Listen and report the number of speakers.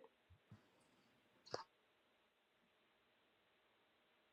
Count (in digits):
0